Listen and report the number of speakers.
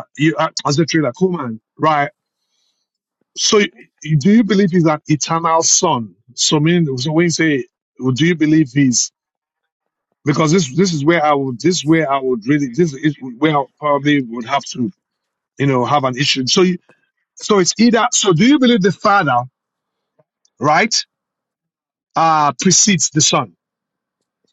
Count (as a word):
one